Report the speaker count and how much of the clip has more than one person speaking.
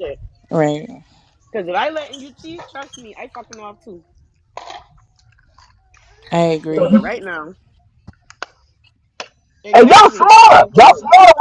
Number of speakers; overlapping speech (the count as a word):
three, about 8%